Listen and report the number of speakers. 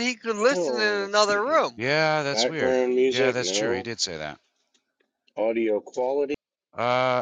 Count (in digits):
3